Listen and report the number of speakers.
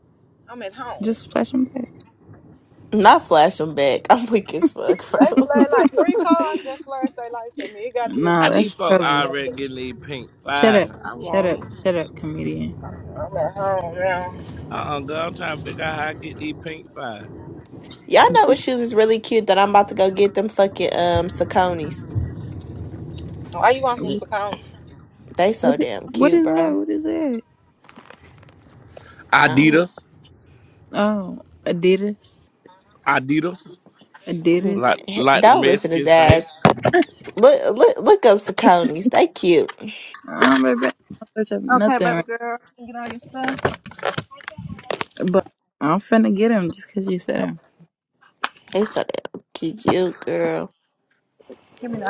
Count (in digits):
4